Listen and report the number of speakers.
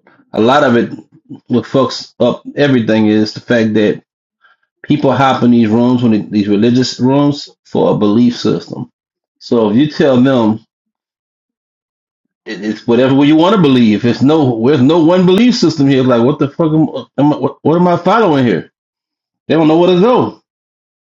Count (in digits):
1